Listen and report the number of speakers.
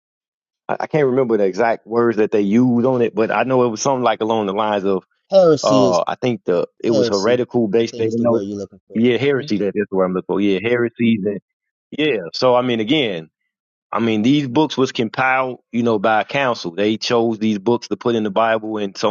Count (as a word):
two